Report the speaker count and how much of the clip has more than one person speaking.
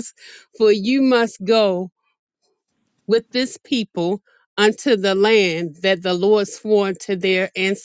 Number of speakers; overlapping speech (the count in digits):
1, no overlap